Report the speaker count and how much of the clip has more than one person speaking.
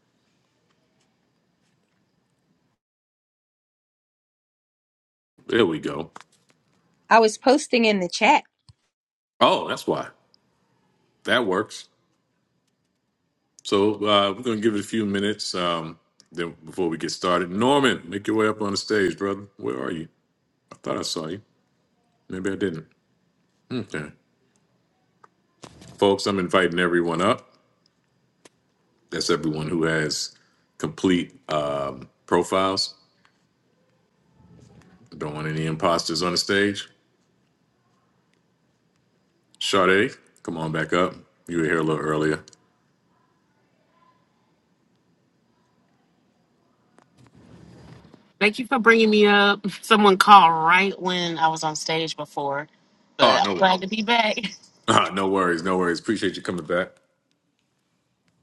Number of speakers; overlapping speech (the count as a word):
three, about 1%